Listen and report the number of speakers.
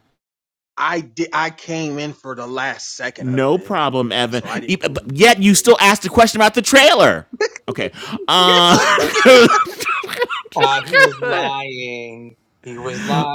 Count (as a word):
three